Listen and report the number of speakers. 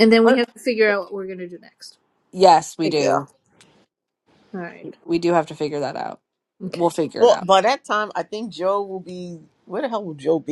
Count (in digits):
3